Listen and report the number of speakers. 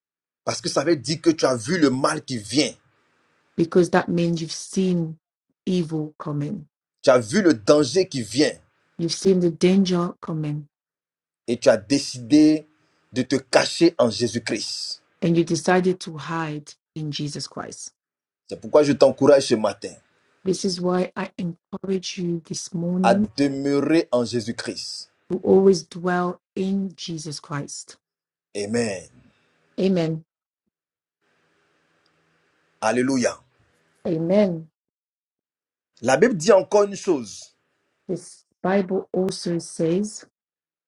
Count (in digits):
2